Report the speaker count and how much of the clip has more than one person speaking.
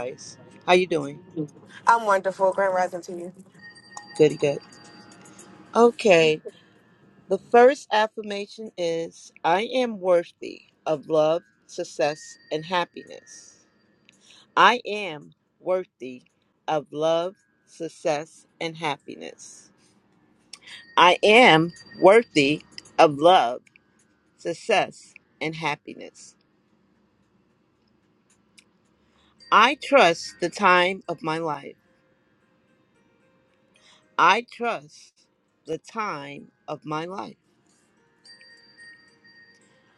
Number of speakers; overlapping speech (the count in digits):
2, no overlap